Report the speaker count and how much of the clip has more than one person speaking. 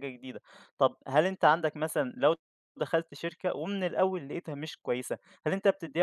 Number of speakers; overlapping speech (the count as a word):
one, no overlap